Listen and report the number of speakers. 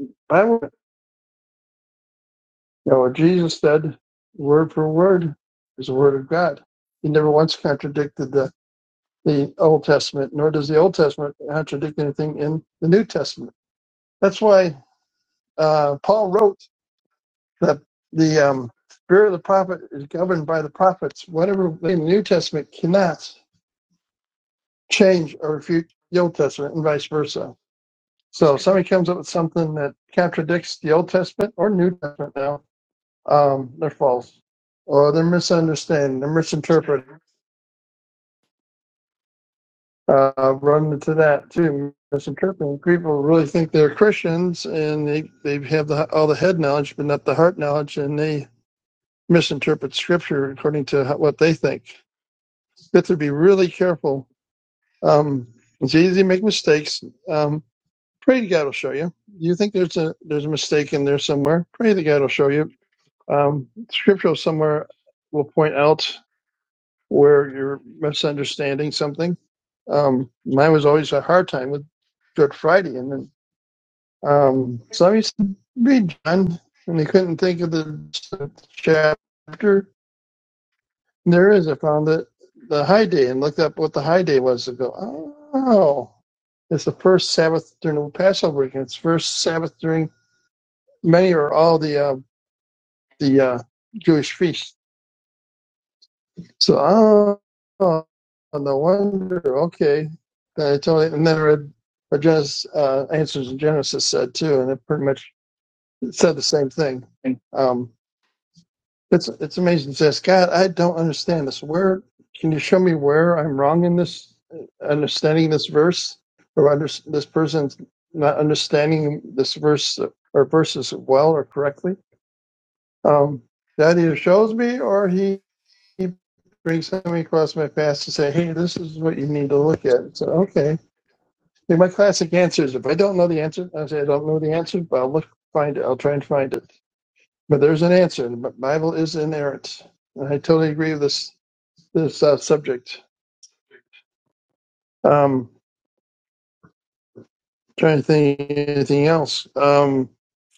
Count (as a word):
one